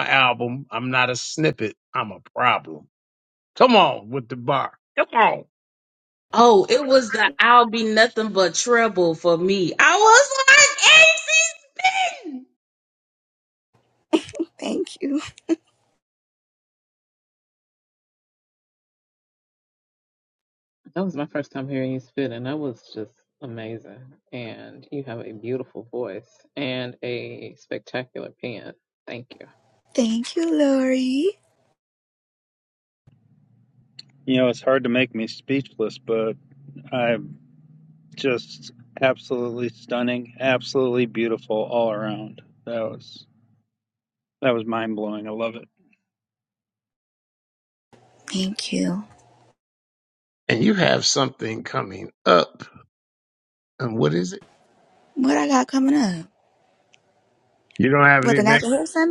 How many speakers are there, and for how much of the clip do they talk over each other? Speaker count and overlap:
five, about 1%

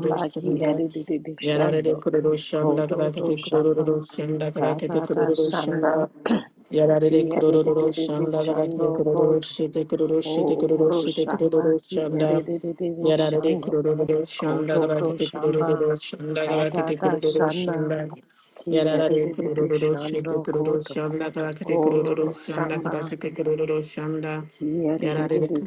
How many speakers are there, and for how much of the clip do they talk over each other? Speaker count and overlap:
two, about 62%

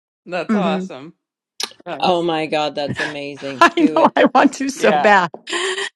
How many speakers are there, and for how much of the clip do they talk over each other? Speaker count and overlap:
three, about 26%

